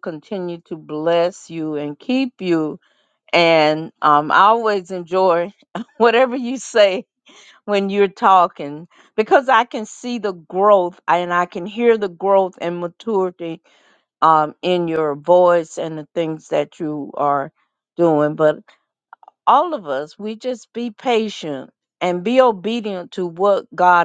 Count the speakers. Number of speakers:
1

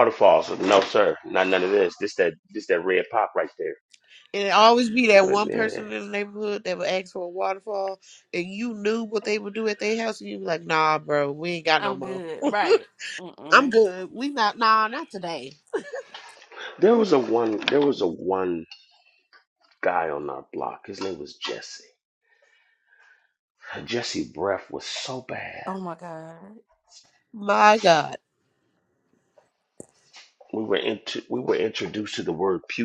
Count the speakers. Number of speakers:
3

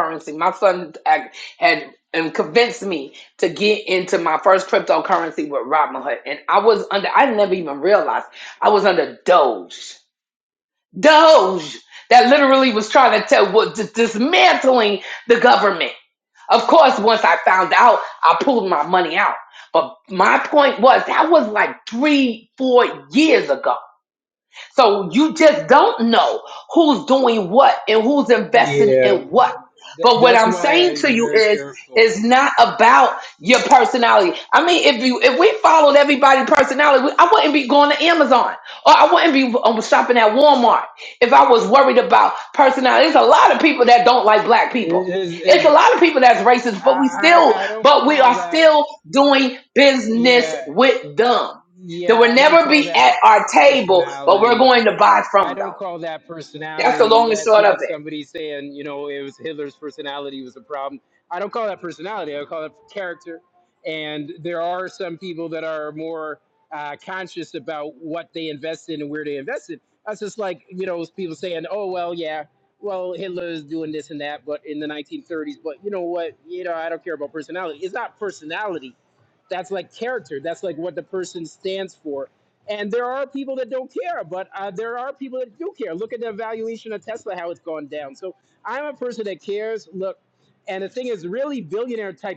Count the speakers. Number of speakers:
2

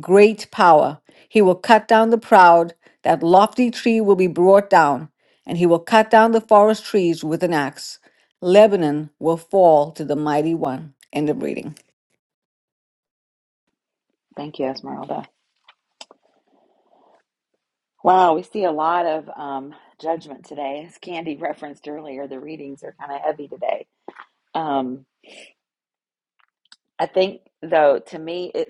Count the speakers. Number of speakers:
2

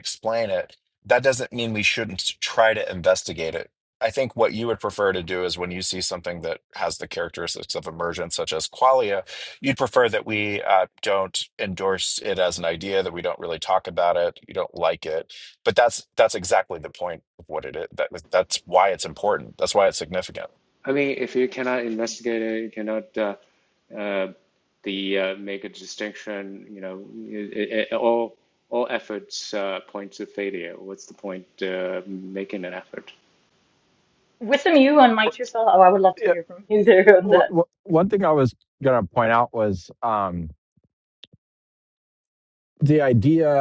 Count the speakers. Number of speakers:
4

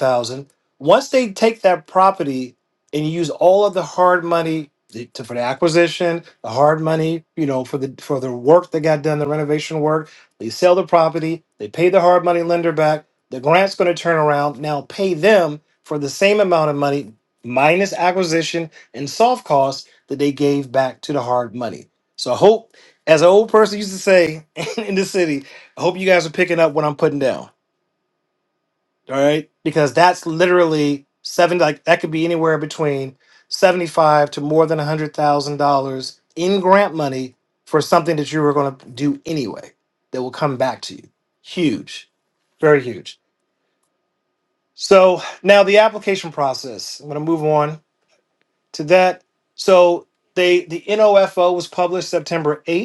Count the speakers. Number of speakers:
1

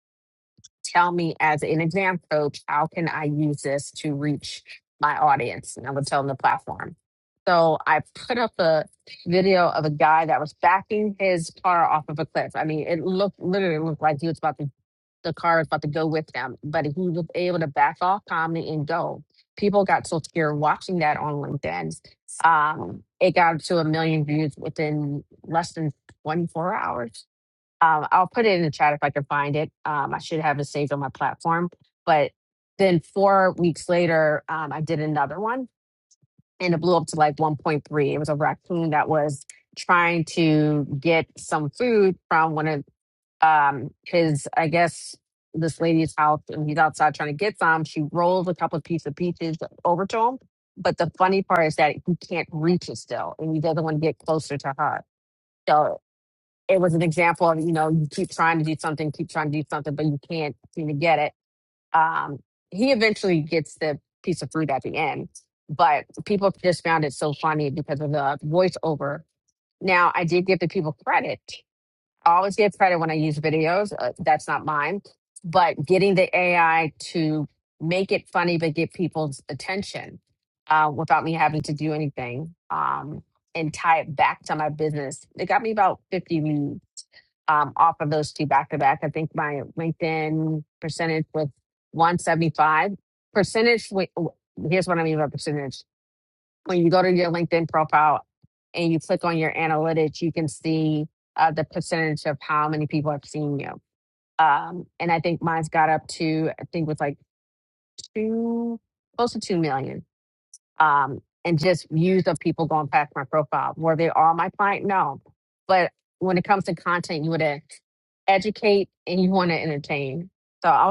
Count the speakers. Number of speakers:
1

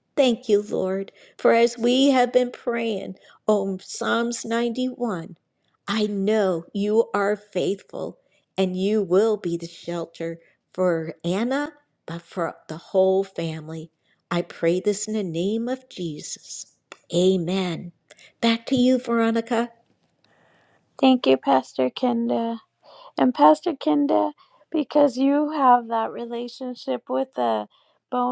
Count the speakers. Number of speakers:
2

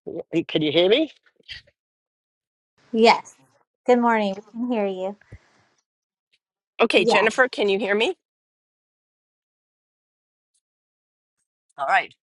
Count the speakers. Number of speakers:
3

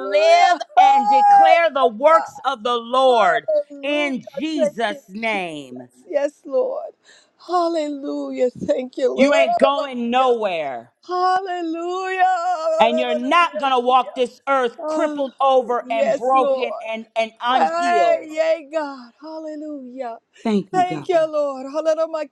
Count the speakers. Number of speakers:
2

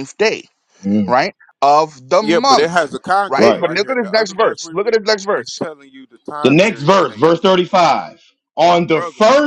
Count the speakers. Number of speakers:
3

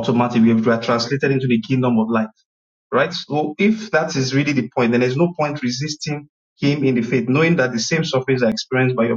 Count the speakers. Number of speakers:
1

